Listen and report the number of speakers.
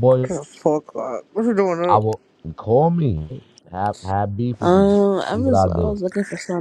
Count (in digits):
3